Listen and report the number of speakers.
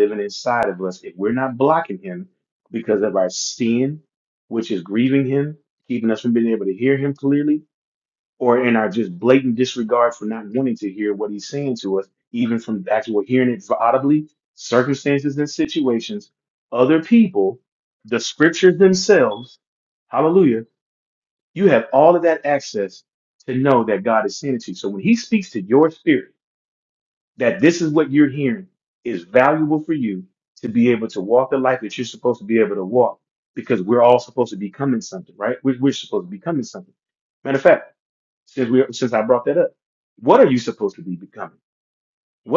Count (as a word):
one